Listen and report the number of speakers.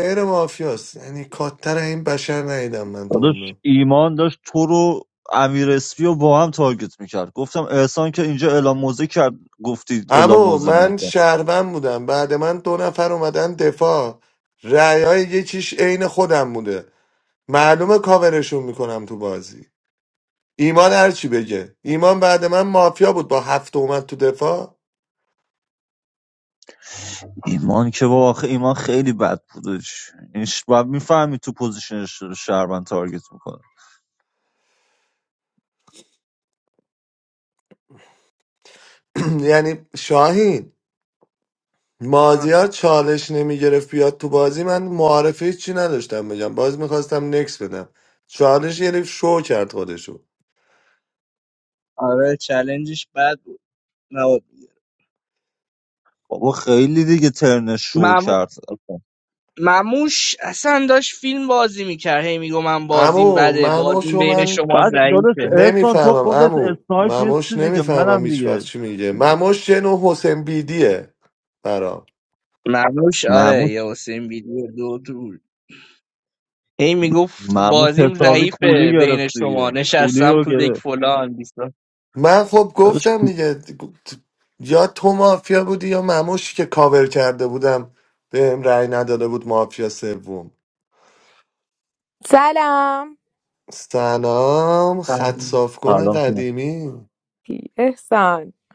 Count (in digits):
4